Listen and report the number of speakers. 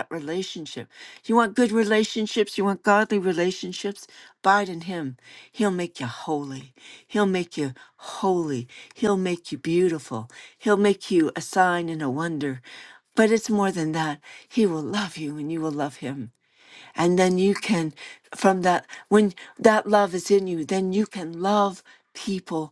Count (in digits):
1